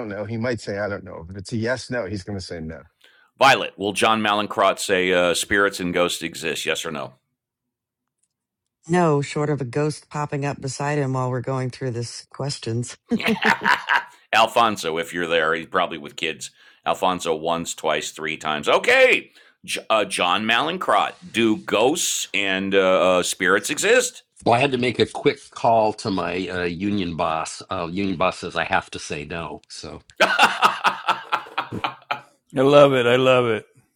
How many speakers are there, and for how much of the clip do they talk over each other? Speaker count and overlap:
5, no overlap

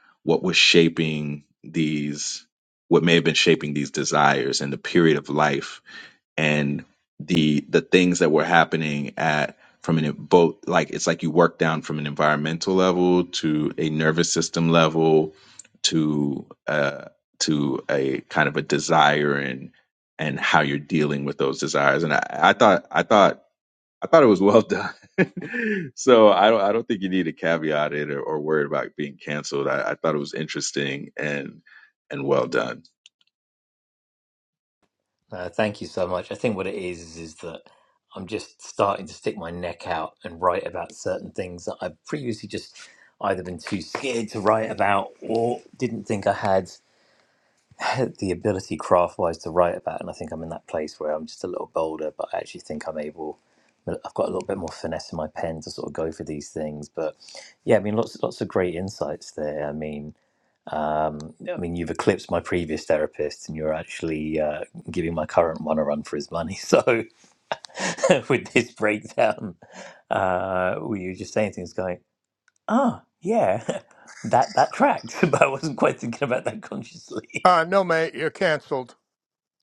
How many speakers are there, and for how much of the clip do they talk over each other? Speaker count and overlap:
3, no overlap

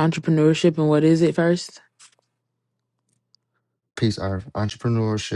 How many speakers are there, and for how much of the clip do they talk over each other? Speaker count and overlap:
2, no overlap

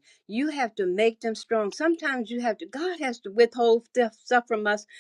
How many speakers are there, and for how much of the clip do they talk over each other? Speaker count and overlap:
1, no overlap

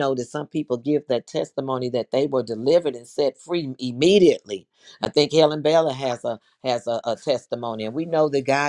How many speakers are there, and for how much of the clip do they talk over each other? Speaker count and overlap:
1, no overlap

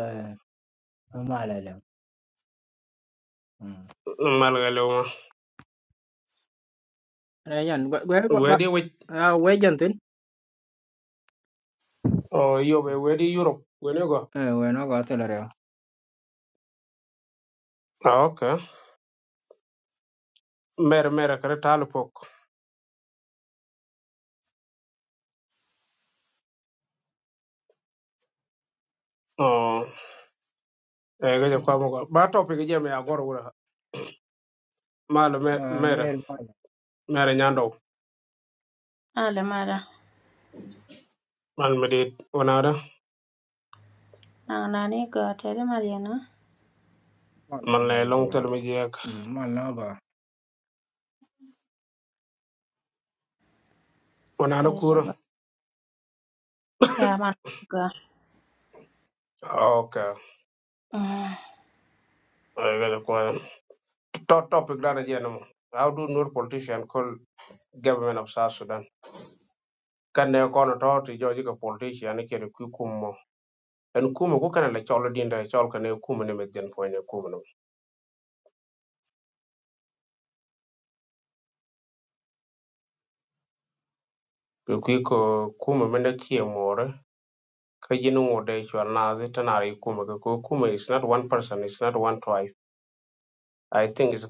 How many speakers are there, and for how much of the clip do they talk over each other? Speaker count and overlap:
3, about 1%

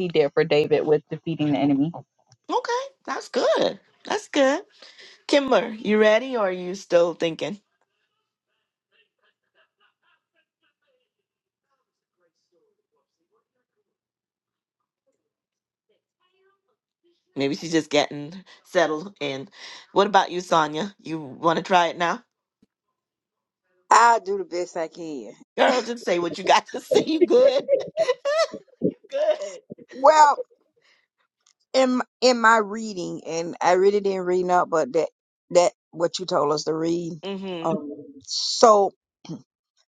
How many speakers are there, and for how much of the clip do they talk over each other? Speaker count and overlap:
3, under 1%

